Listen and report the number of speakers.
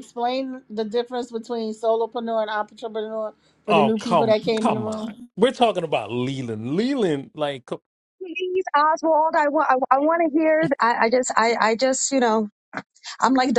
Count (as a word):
three